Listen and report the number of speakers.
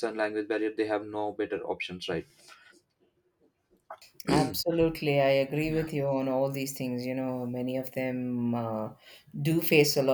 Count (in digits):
2